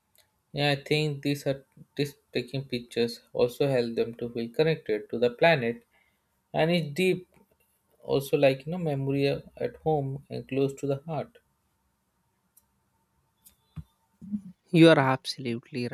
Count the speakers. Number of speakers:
2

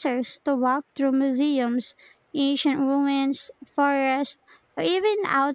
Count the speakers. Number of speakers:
1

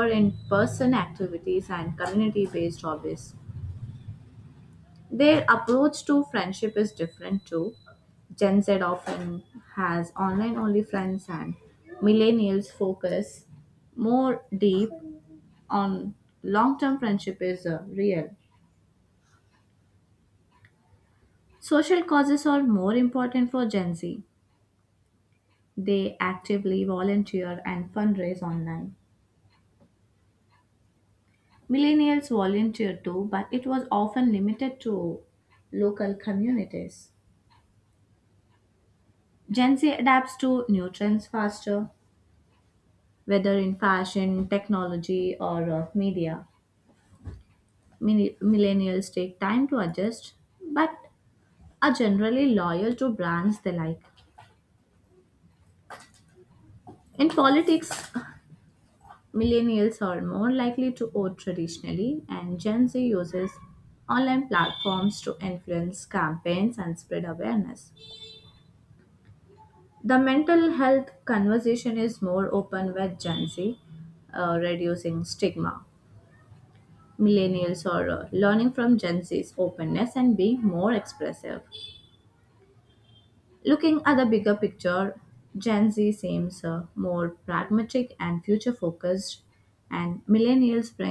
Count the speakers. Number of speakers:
1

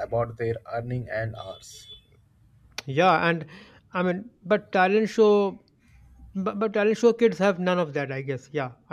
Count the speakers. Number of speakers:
2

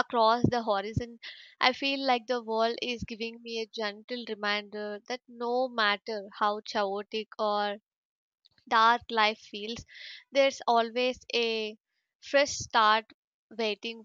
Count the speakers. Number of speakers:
1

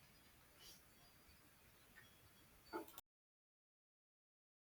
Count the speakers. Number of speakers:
0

